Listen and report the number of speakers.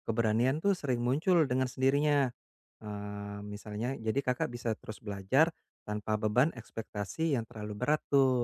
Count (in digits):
1